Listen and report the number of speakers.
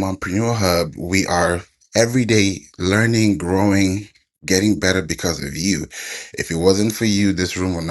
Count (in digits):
1